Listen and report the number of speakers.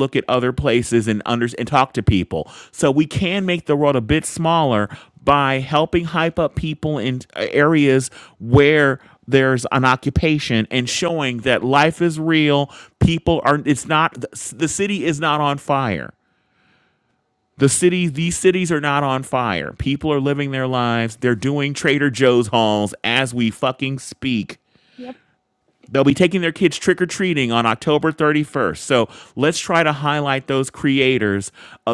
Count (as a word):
one